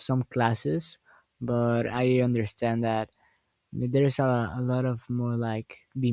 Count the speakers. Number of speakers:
one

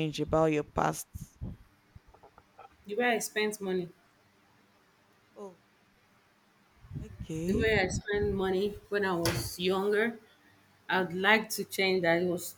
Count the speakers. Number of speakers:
two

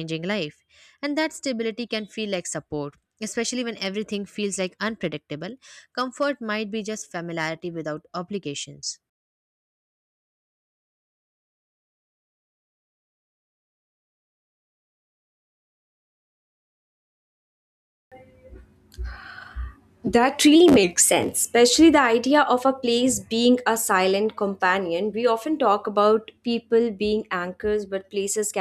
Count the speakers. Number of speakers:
two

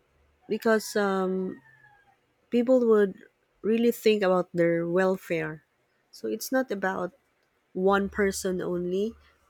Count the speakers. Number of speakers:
one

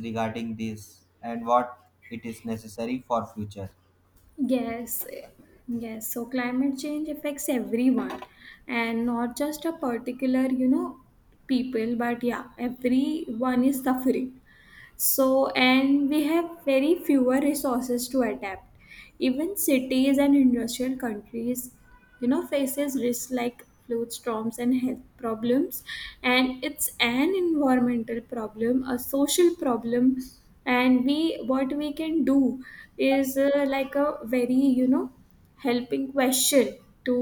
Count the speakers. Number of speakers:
two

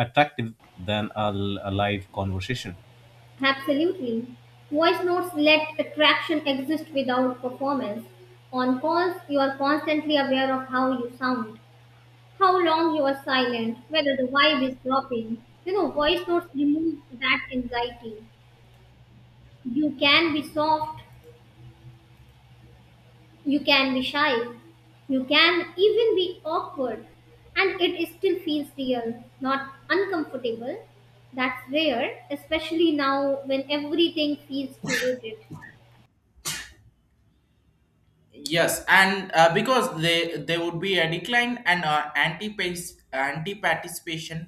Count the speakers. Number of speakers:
three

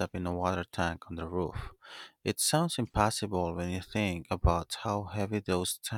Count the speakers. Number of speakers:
one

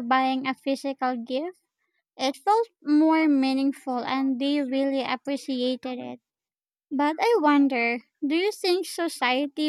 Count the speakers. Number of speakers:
one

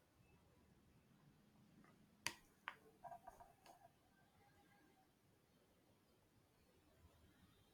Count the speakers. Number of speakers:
zero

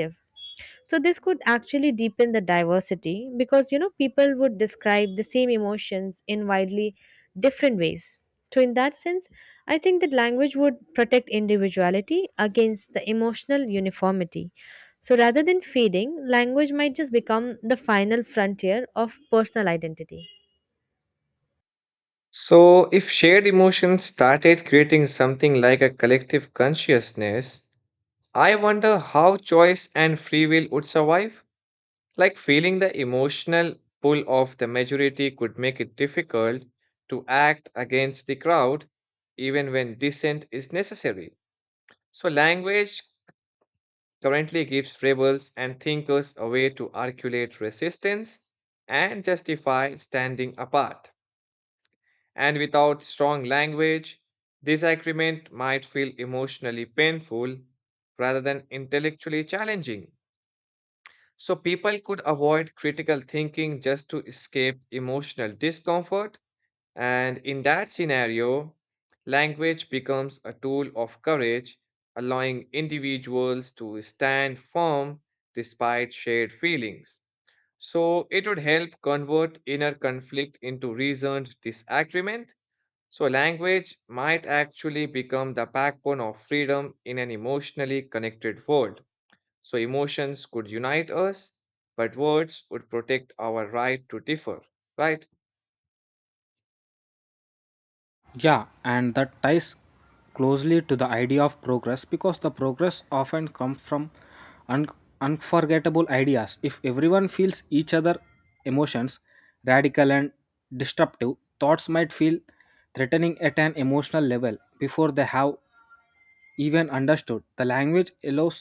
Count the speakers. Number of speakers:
three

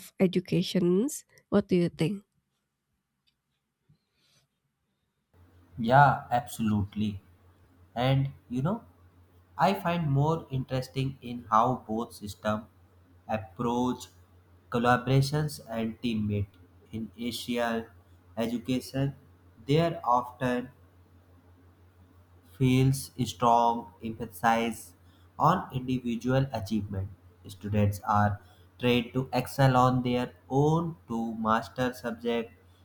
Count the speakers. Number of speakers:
two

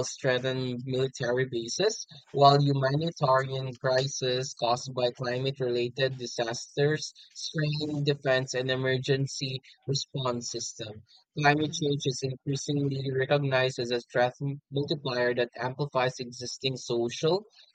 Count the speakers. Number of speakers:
one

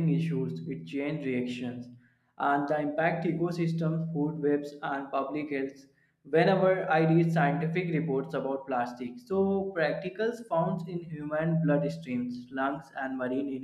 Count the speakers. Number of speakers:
one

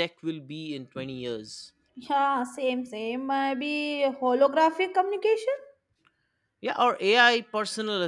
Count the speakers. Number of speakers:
two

